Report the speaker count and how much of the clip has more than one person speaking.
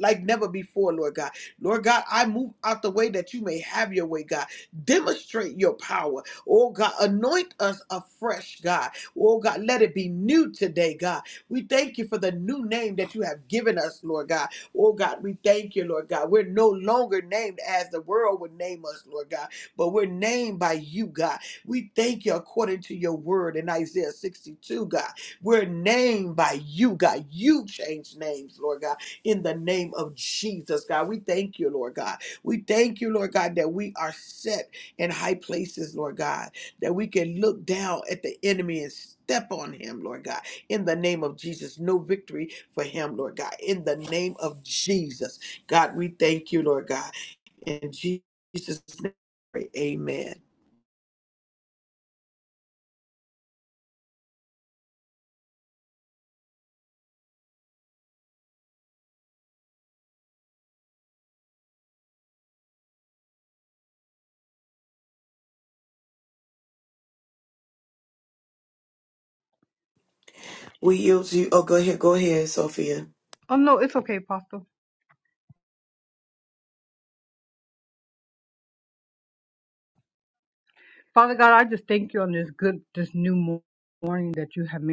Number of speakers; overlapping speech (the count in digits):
3, no overlap